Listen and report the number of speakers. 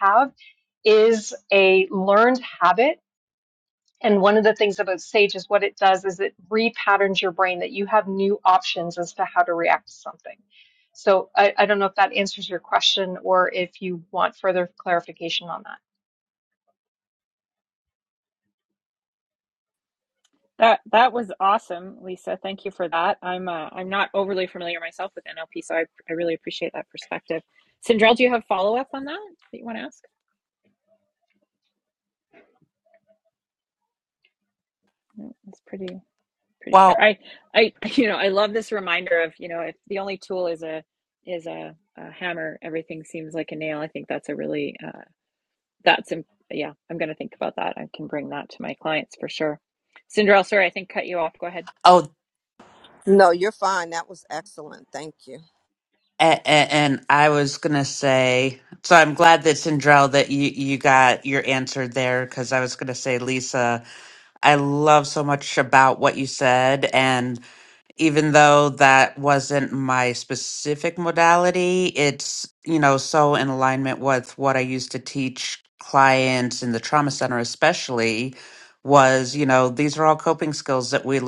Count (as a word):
four